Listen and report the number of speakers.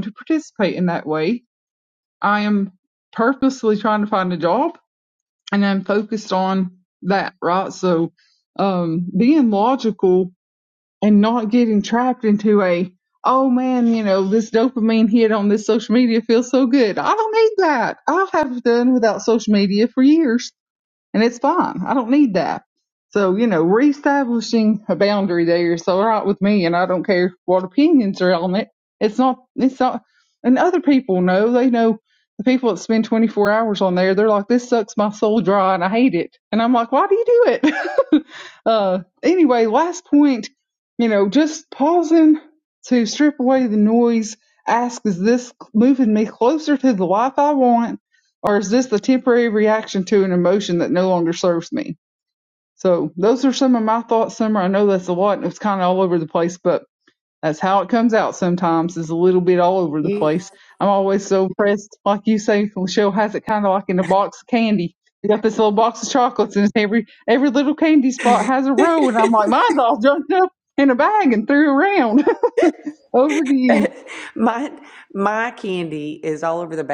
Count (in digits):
2